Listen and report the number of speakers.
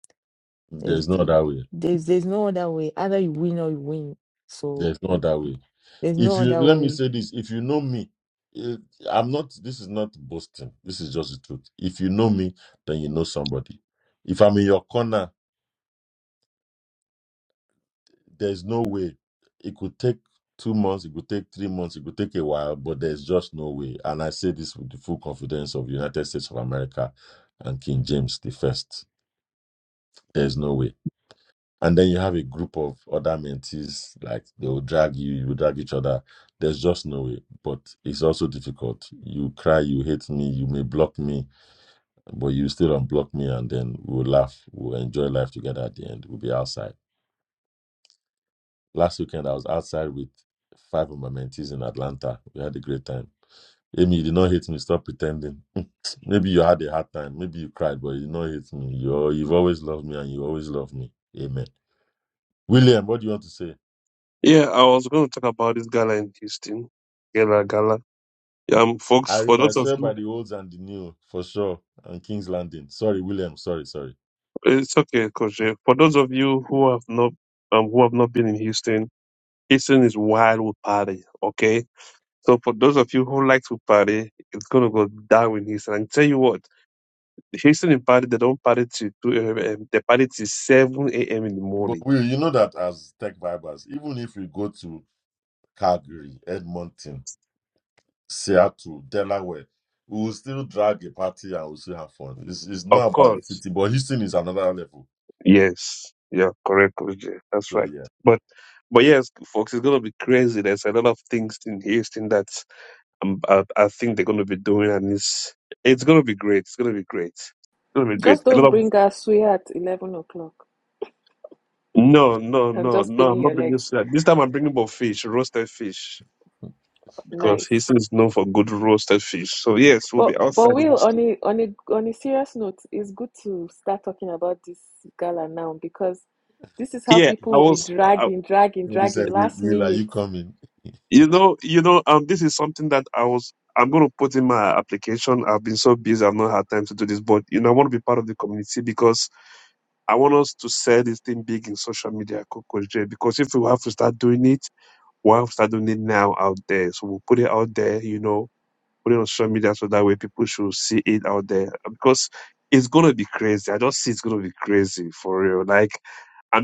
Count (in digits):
4